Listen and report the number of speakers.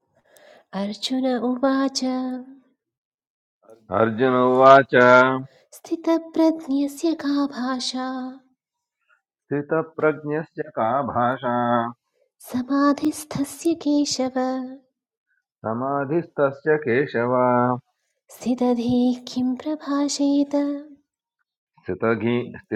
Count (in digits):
2